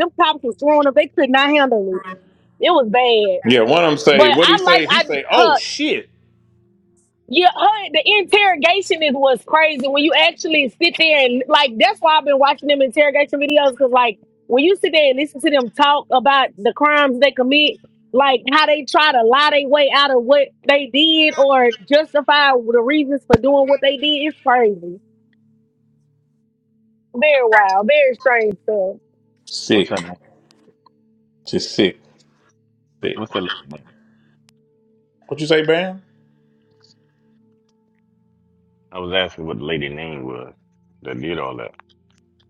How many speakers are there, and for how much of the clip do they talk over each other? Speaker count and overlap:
3, about 5%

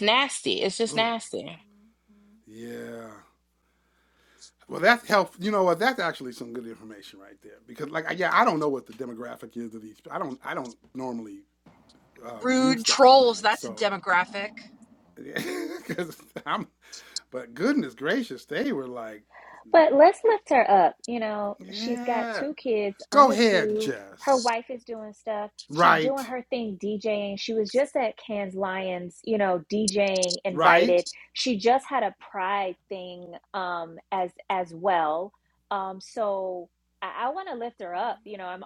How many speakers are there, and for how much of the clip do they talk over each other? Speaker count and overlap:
4, about 11%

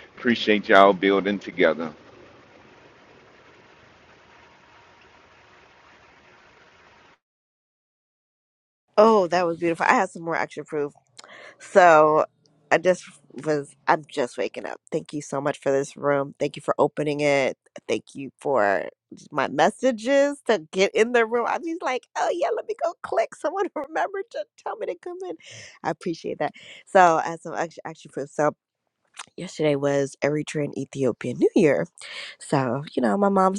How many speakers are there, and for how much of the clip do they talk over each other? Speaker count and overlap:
2, no overlap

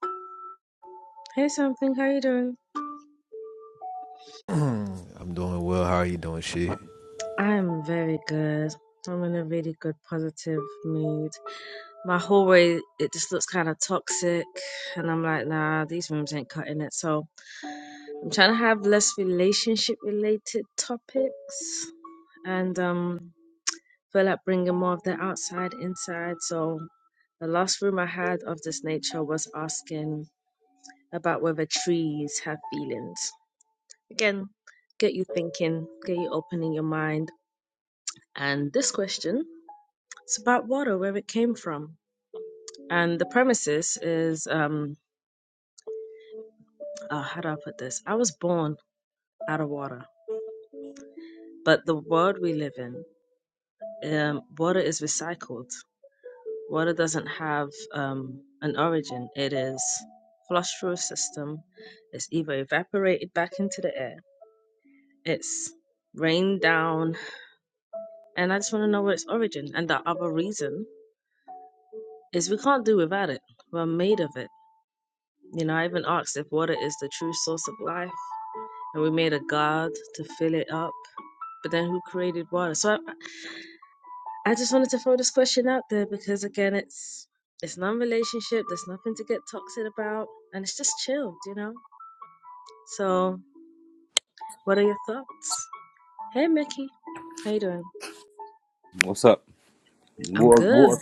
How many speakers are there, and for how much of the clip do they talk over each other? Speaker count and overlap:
3, about 1%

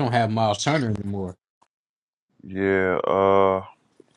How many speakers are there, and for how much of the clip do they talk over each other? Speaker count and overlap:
2, no overlap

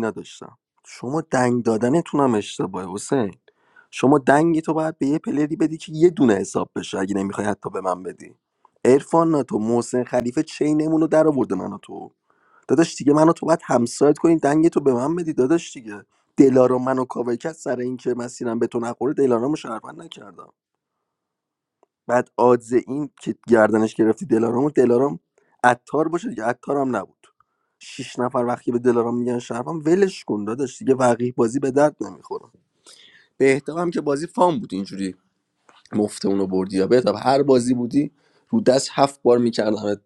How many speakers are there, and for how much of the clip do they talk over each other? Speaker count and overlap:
1, no overlap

